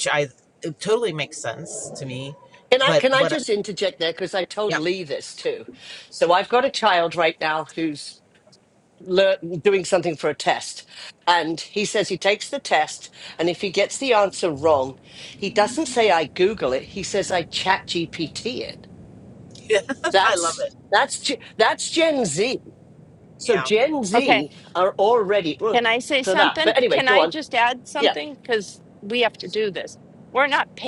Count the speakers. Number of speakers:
three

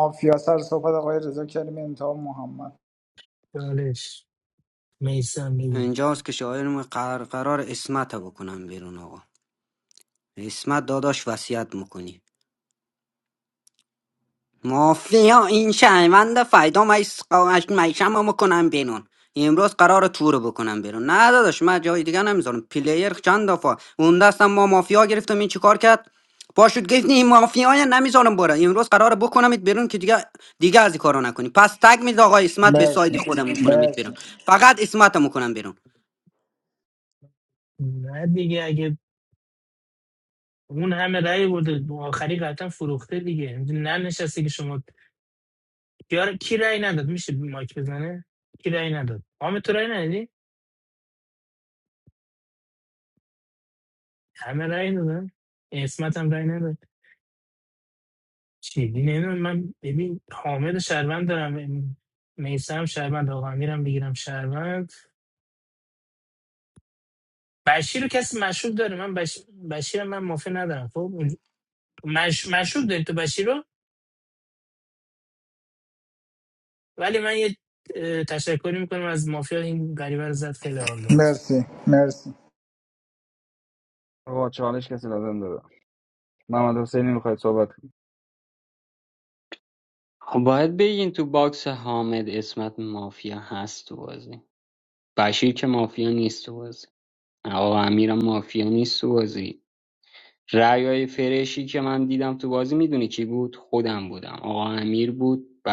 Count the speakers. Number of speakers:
five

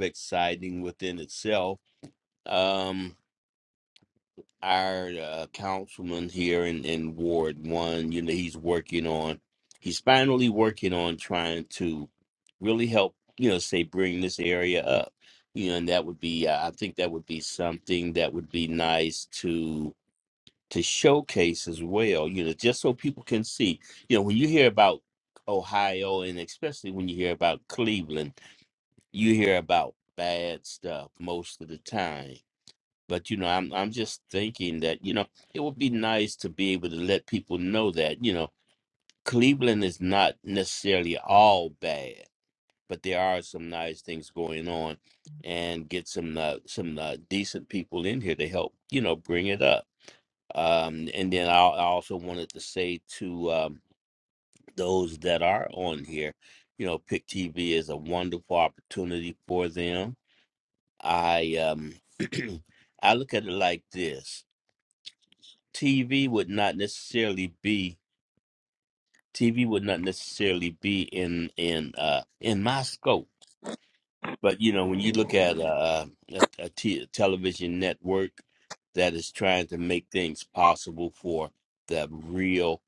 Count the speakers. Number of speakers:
one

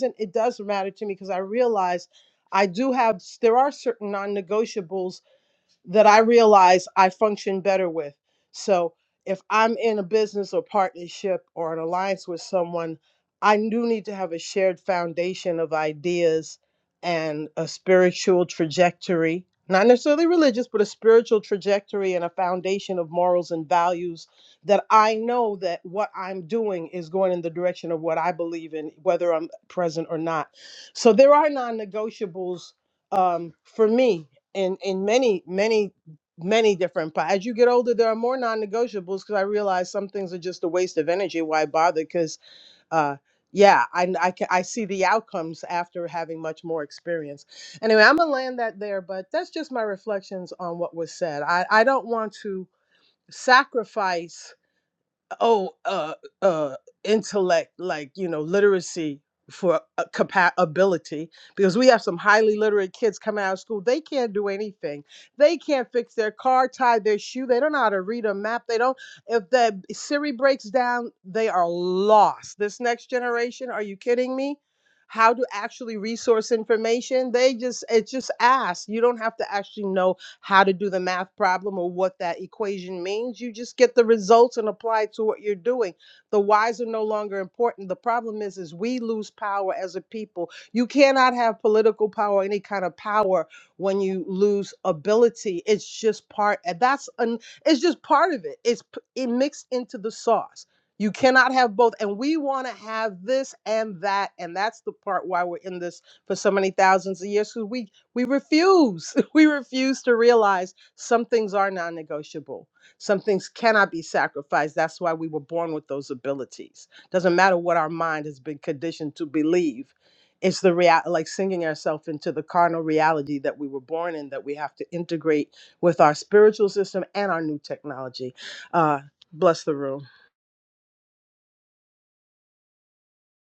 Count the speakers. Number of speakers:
one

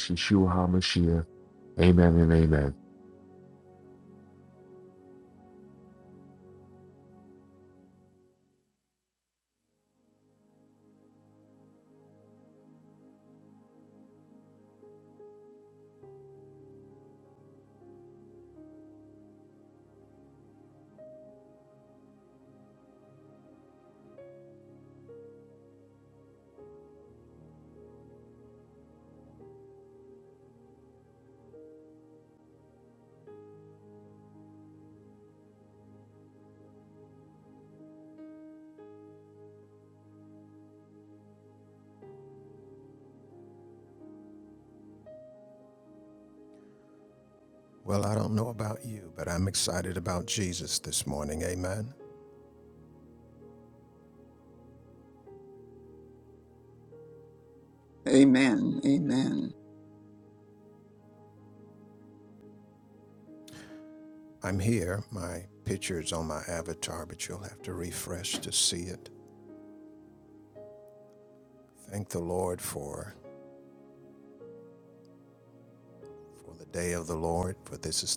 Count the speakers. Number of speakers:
three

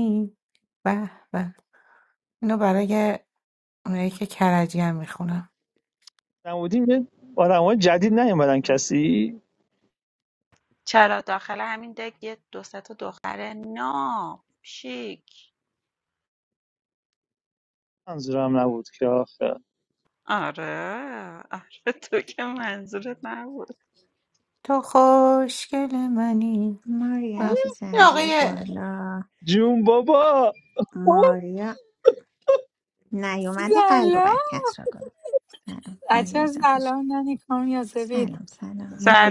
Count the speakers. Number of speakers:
five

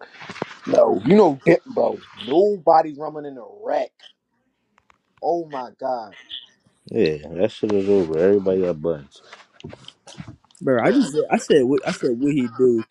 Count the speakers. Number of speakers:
three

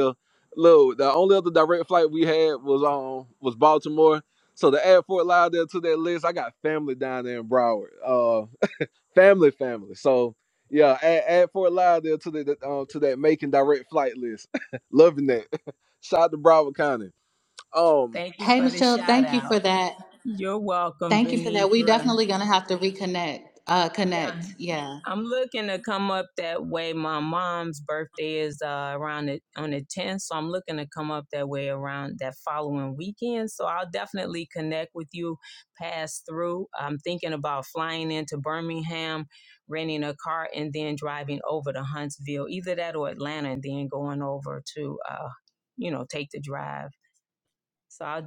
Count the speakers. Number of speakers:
three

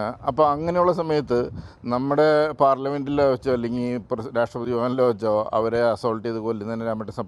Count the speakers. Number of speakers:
one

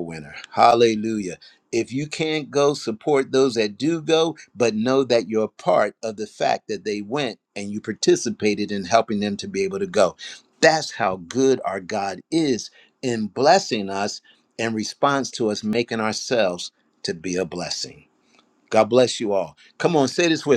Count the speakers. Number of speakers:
one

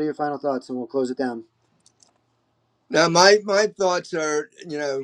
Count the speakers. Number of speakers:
two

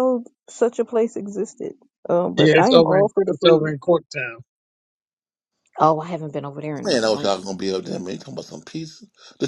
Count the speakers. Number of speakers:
three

